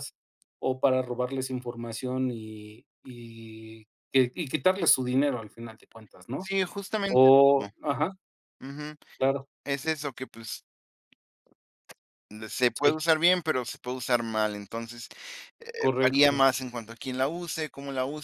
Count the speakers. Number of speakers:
2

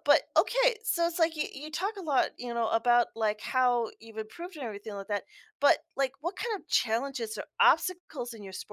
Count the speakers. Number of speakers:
1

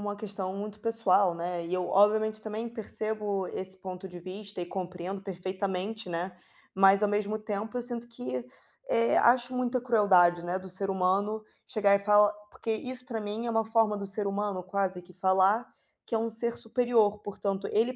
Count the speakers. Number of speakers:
1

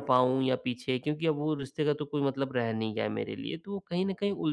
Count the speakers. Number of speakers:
1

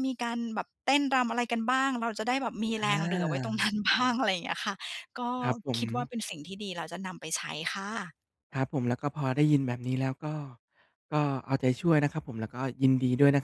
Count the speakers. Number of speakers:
2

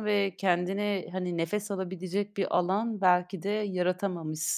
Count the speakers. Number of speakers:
1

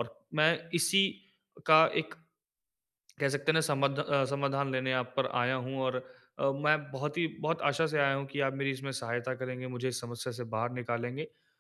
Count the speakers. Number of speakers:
1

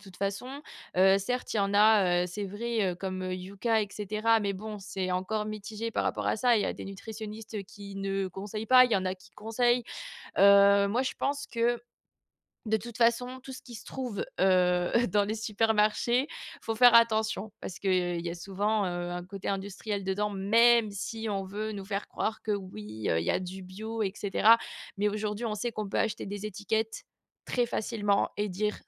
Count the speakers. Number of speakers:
1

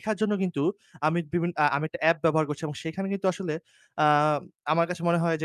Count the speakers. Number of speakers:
1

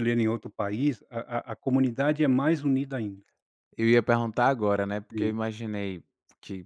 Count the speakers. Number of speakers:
2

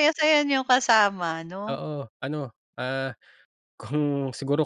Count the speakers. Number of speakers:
2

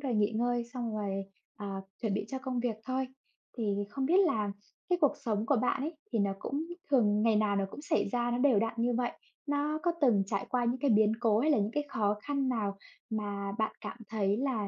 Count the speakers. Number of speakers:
1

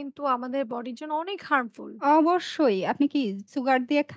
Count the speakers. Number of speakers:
2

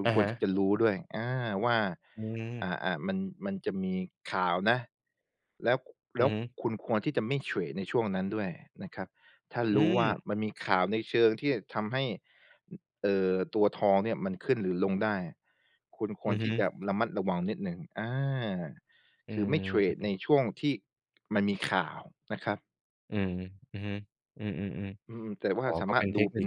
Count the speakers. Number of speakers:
2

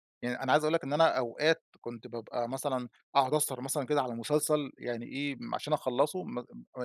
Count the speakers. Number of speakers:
1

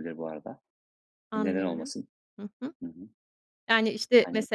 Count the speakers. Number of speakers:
2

